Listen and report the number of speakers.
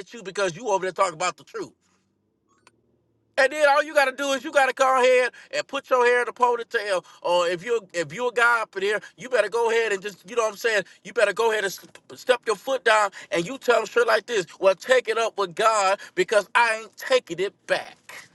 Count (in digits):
1